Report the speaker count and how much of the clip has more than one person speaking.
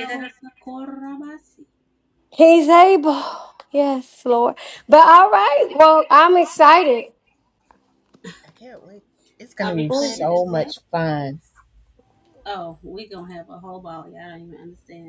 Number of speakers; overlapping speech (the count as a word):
three, about 7%